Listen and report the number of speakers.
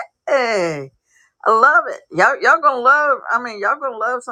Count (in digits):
1